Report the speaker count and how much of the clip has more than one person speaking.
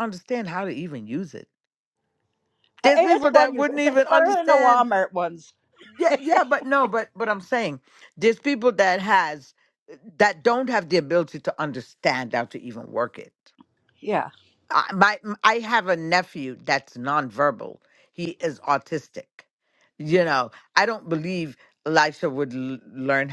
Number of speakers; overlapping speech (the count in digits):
2, about 8%